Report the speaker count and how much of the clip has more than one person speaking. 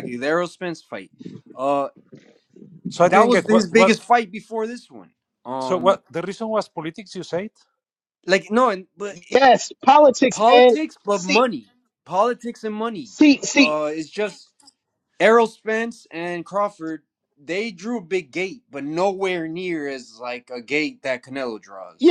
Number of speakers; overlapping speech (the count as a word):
three, about 9%